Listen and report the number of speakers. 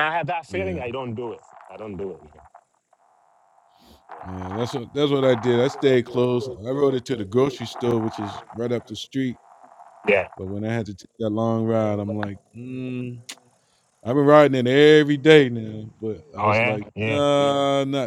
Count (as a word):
two